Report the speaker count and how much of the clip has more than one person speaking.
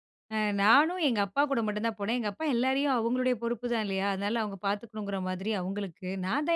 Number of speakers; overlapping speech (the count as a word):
one, no overlap